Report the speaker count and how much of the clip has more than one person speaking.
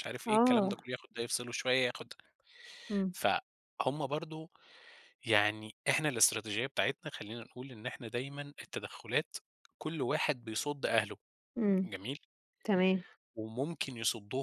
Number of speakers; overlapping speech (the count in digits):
2, about 3%